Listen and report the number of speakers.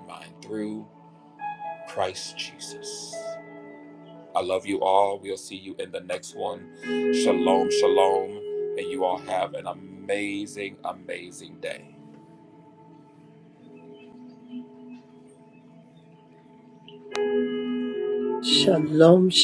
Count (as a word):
two